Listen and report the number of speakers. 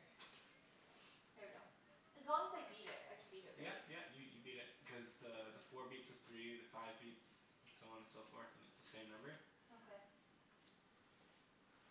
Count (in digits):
2